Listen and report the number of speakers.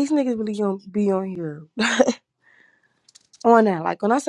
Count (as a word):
one